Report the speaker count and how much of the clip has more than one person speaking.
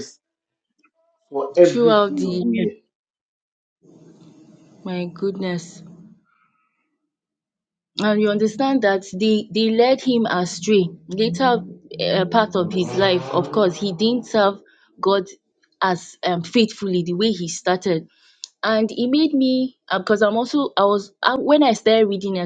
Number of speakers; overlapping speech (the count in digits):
2, about 5%